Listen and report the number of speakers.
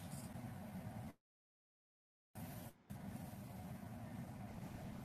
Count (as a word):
zero